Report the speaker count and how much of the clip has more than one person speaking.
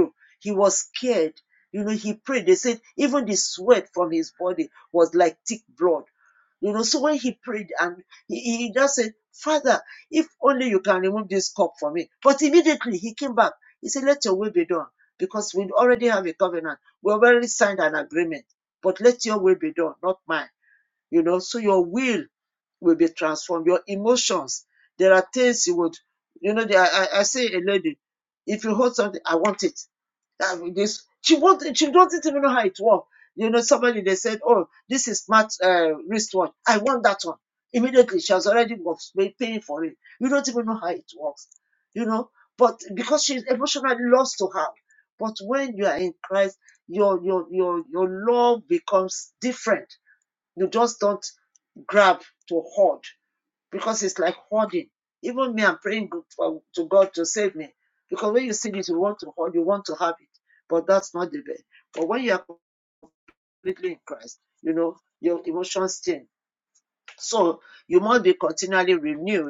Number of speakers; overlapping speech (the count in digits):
1, no overlap